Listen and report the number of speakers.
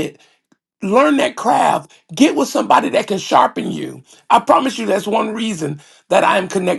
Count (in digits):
1